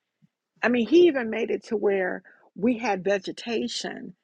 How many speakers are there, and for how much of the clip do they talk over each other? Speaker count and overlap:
one, no overlap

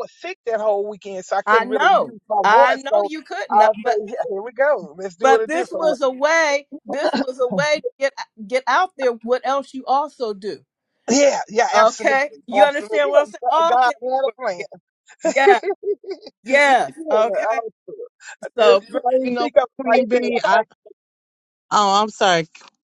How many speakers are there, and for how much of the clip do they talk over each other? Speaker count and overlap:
three, about 32%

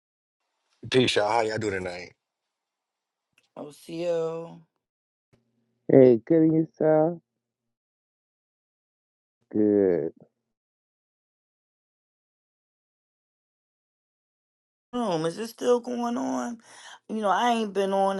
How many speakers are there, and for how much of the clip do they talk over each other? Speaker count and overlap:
three, no overlap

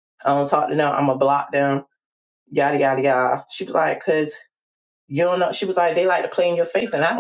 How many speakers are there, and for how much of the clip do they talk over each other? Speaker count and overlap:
one, no overlap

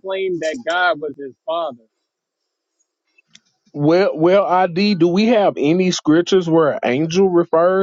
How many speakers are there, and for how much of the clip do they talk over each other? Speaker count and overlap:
two, no overlap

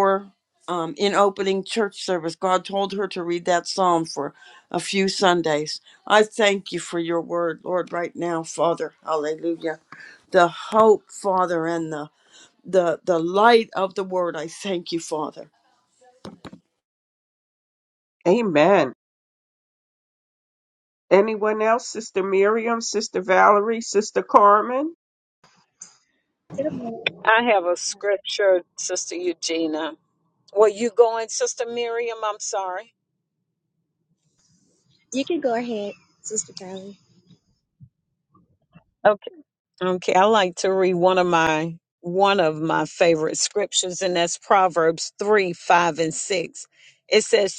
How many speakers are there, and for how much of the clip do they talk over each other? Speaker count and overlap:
four, no overlap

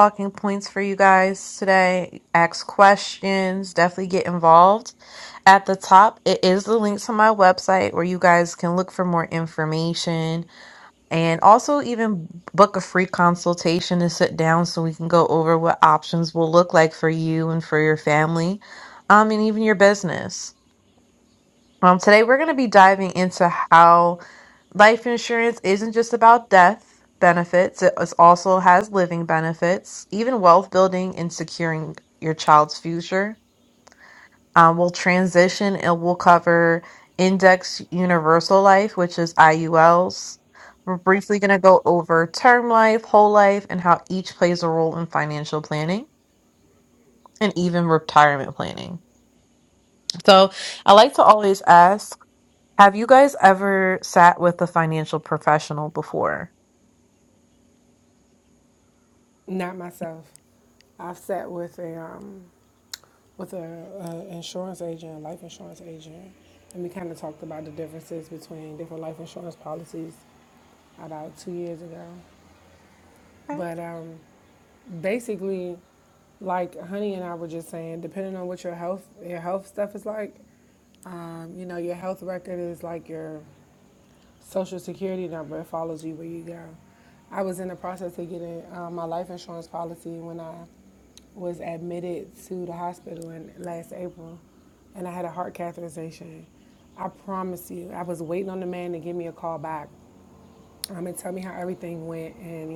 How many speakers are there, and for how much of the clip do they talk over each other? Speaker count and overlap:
two, no overlap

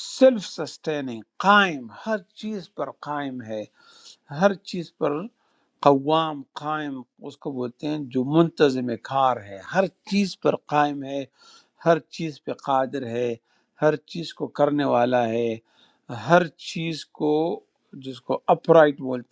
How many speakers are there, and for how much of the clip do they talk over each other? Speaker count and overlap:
one, no overlap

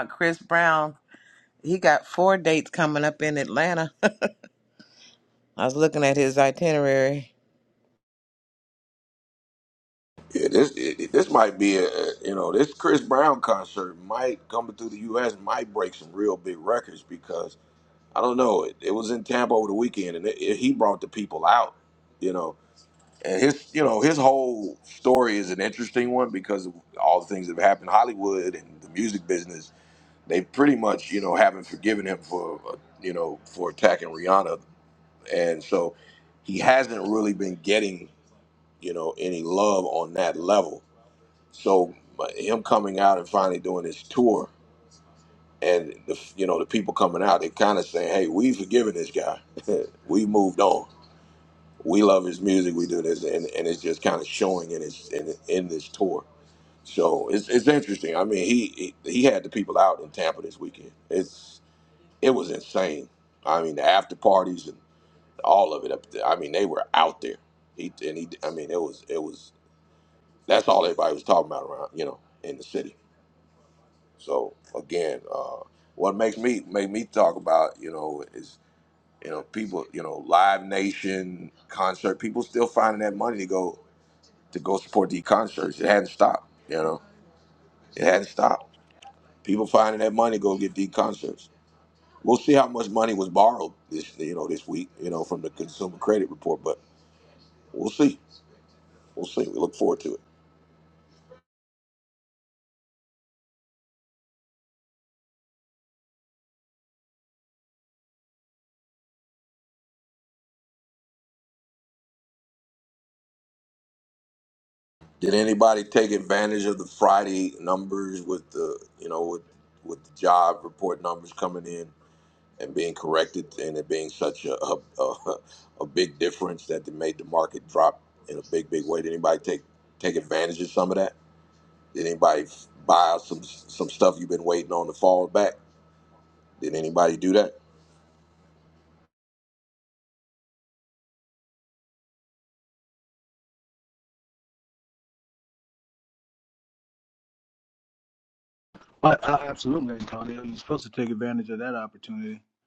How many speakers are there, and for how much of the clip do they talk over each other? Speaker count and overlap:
three, no overlap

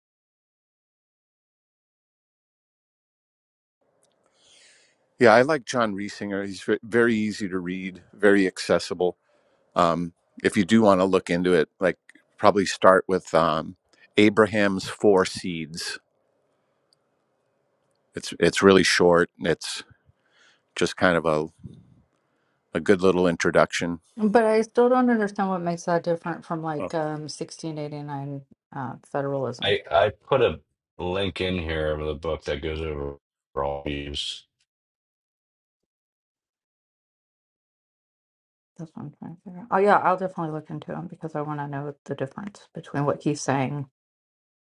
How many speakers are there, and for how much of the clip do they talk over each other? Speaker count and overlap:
three, about 1%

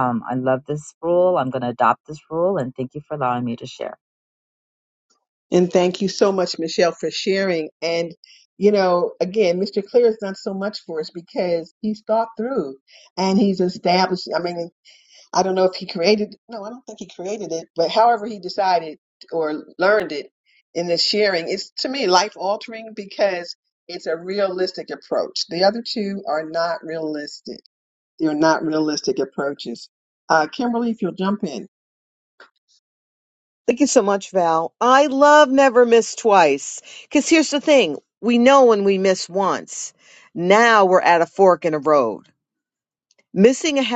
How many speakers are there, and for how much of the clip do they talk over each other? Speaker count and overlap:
three, no overlap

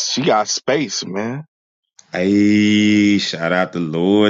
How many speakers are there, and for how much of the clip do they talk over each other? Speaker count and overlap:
two, no overlap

